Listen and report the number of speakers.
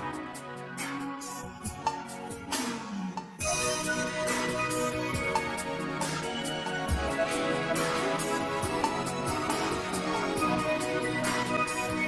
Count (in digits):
0